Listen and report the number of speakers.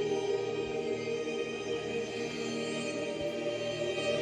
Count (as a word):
zero